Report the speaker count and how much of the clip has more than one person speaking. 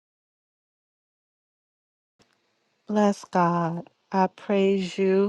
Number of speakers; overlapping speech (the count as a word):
one, no overlap